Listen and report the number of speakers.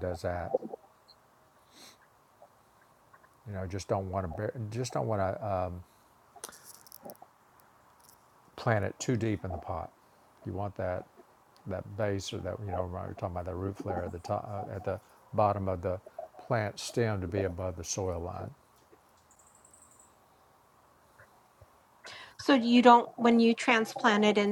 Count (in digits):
2